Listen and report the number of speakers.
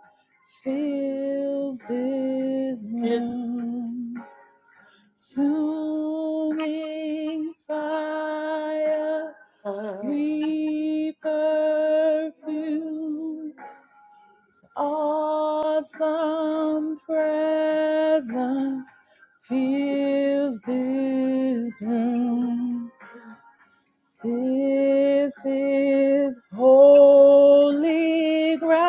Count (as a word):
one